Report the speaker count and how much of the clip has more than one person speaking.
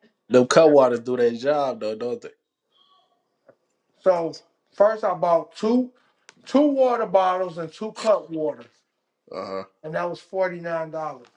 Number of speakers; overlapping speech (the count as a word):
two, no overlap